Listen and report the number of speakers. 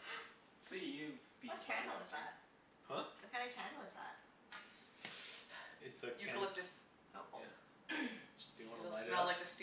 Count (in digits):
4